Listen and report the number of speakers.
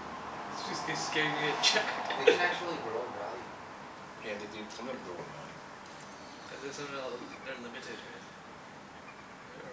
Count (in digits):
3